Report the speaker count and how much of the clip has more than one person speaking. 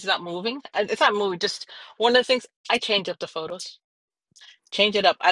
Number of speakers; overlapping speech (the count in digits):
1, no overlap